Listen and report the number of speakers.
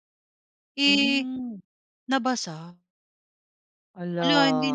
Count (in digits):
2